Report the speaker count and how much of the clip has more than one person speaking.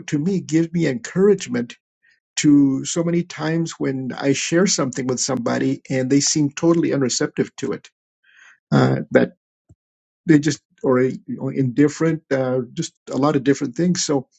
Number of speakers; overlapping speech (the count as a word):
one, no overlap